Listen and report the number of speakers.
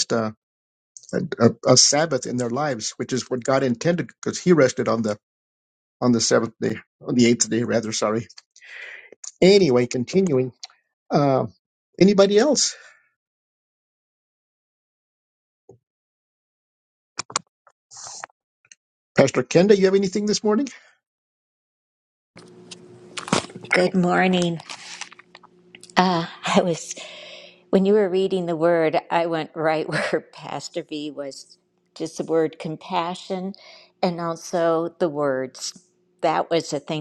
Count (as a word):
two